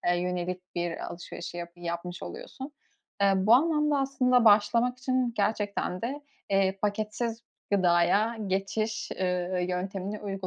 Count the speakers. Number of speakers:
1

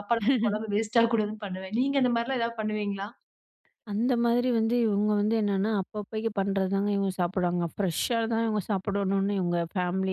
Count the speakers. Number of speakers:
2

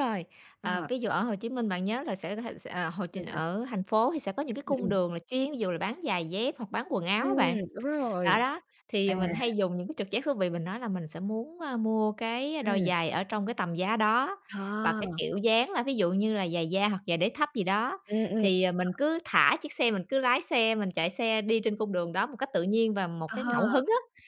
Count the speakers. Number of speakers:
2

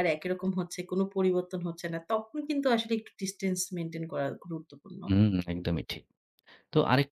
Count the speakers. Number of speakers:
2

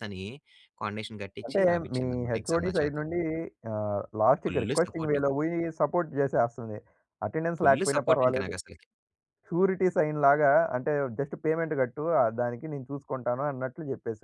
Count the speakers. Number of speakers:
2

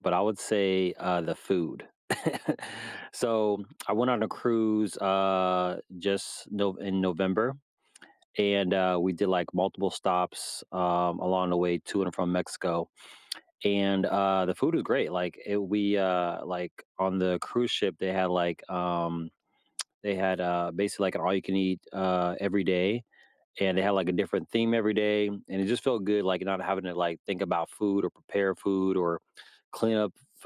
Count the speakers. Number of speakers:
1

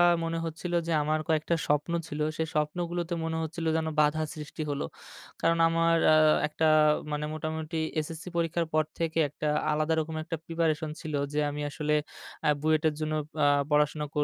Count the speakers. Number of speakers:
1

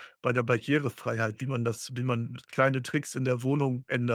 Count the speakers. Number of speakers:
1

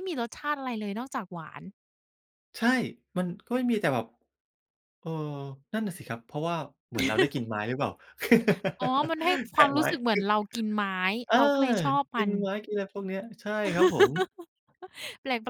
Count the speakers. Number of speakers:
2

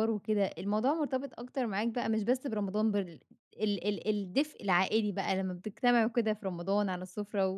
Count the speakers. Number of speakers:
1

